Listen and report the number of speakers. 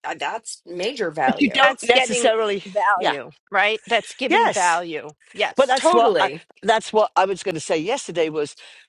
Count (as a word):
three